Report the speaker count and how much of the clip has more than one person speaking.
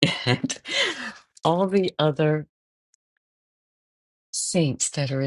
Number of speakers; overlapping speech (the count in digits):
1, no overlap